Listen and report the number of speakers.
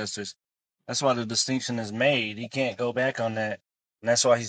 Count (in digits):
1